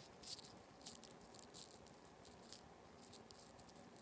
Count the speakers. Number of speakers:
0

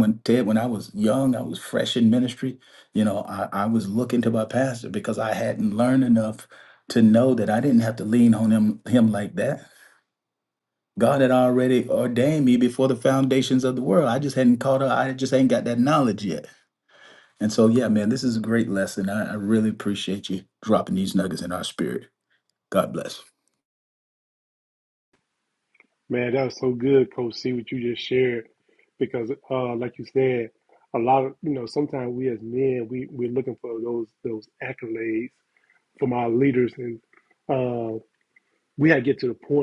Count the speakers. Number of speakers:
2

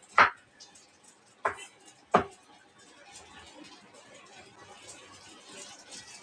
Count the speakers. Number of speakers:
0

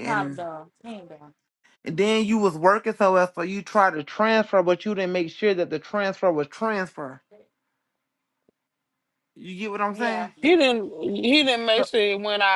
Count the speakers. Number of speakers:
3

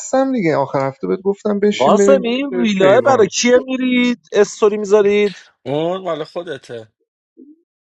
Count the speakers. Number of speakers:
3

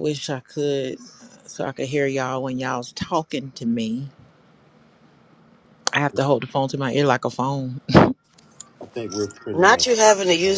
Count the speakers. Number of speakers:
3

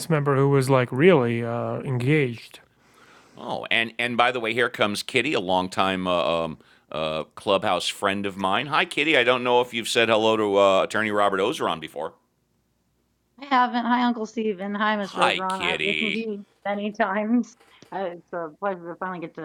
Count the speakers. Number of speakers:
3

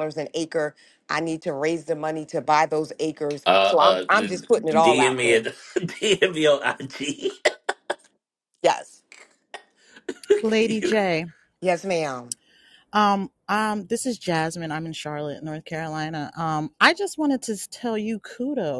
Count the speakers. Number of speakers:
3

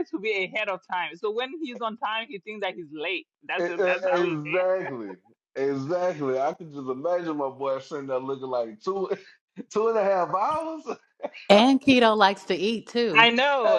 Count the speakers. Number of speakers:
3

